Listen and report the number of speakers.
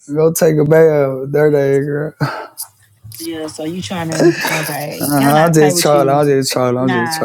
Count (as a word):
two